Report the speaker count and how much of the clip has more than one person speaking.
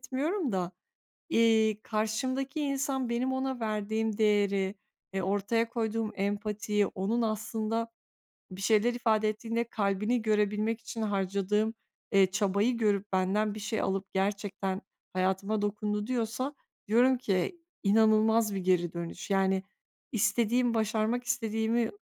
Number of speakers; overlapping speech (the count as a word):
one, no overlap